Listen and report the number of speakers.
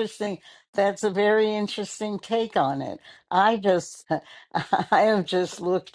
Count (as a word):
one